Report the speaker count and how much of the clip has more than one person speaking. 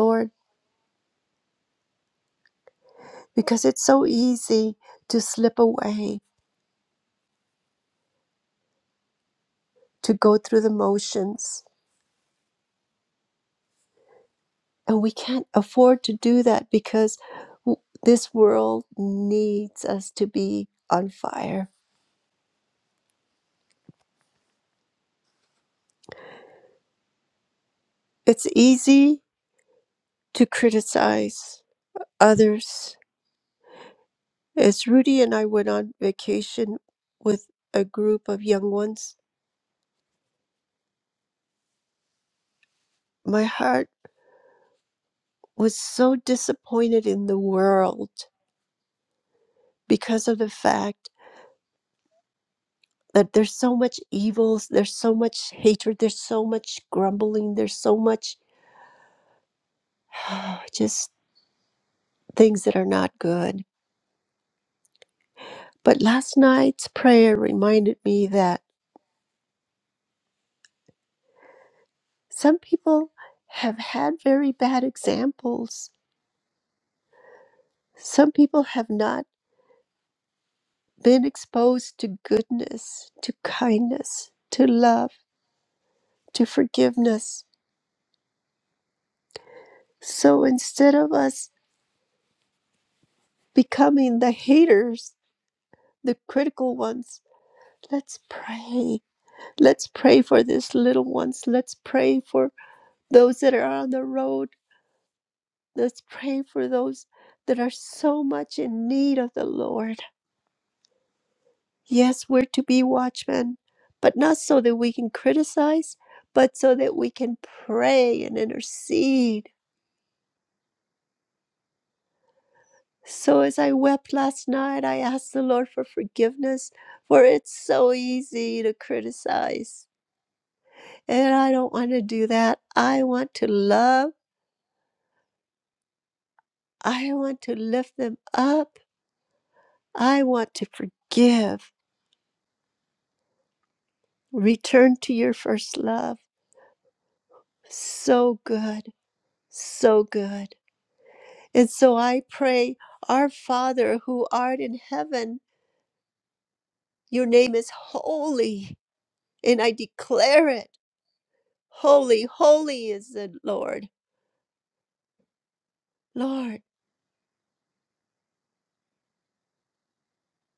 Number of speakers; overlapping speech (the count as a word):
one, no overlap